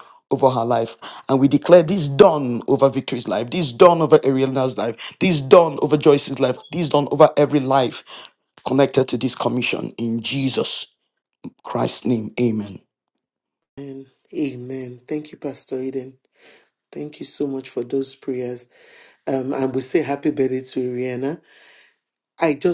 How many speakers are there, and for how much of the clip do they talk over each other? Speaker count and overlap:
2, no overlap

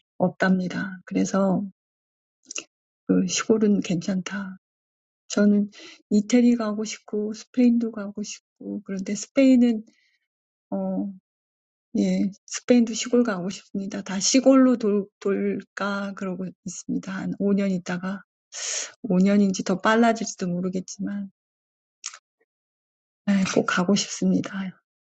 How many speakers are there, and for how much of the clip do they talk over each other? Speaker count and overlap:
1, no overlap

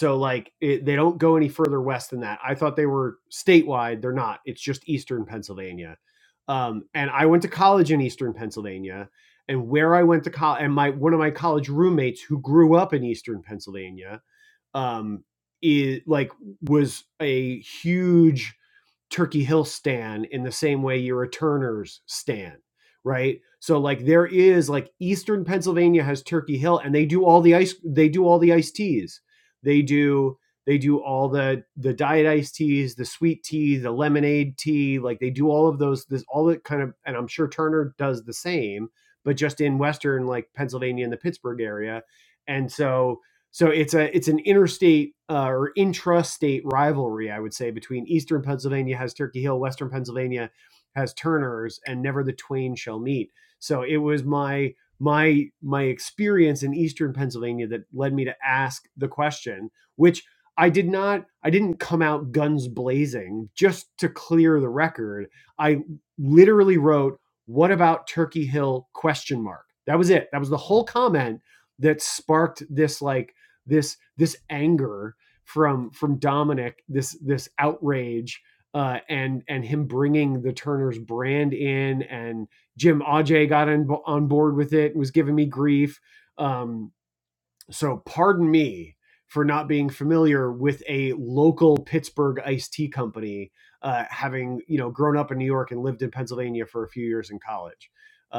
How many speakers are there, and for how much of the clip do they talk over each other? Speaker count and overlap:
1, no overlap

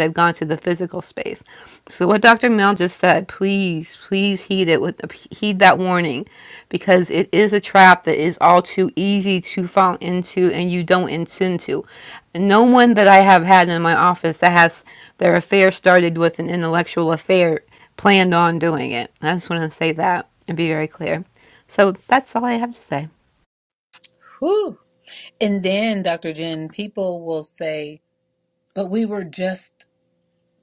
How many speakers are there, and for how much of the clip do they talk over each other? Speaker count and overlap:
2, no overlap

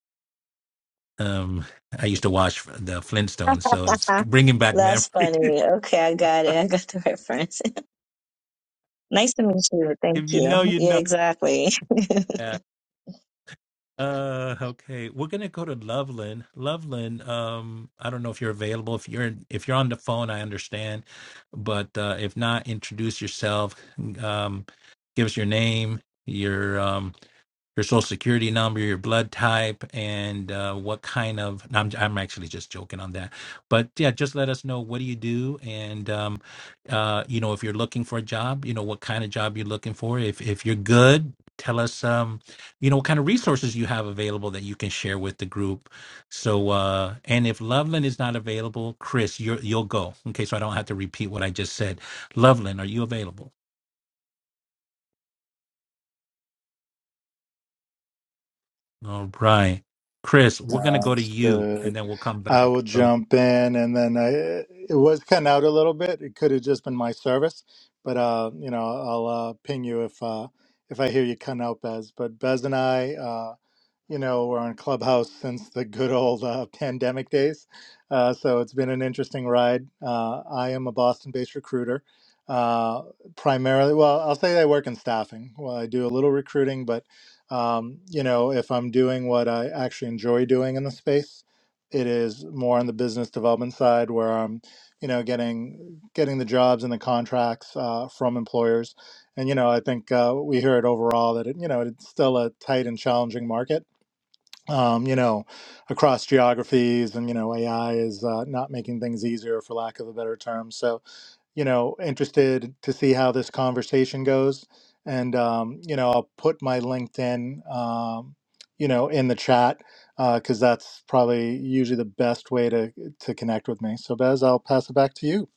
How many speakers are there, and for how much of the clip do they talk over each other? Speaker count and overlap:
3, about 3%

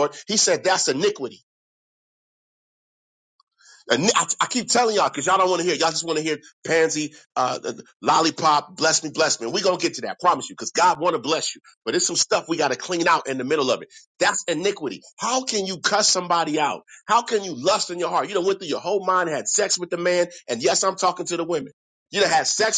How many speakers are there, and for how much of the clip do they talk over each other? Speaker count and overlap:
1, no overlap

